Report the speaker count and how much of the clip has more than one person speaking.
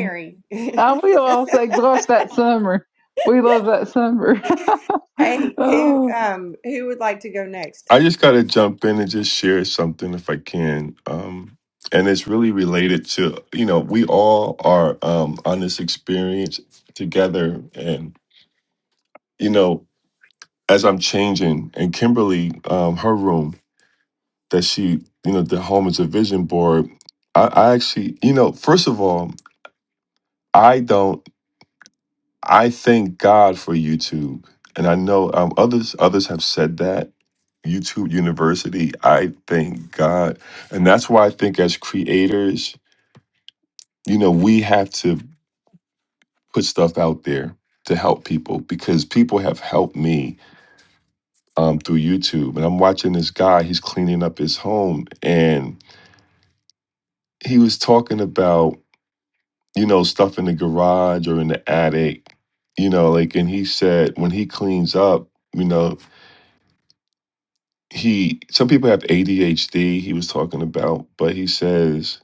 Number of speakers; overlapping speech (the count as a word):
three, about 1%